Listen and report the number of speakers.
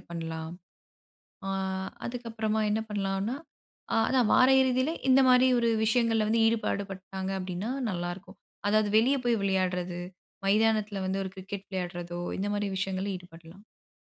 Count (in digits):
1